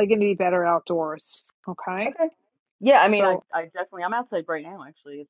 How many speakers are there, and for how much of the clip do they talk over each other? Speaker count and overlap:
2, about 6%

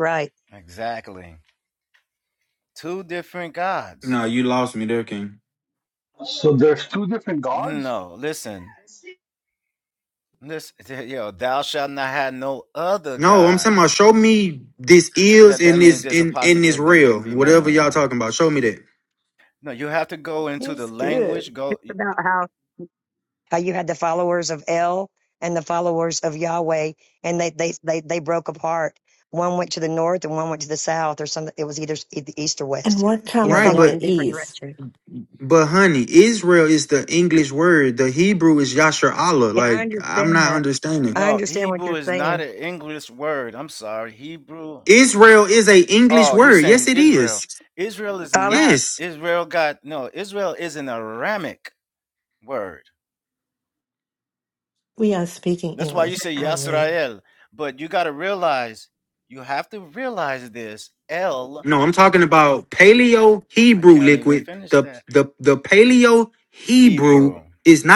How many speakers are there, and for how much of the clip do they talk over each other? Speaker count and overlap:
5, about 18%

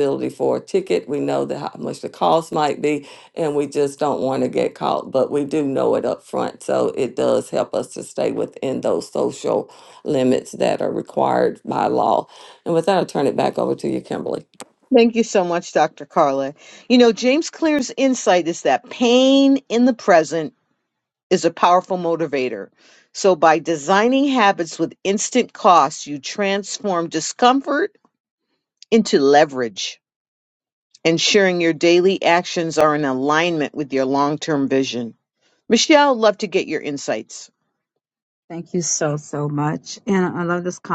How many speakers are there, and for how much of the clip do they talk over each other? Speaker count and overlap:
3, no overlap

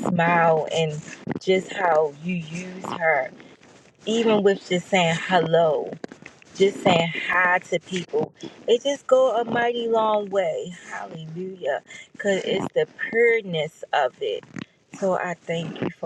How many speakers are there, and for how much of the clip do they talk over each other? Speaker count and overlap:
1, no overlap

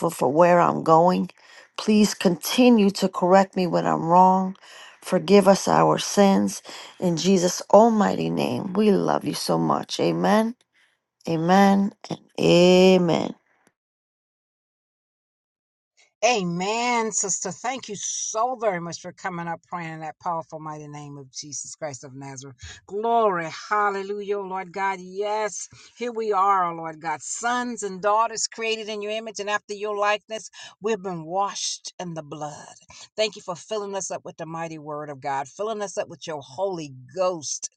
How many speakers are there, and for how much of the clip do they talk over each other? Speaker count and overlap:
2, no overlap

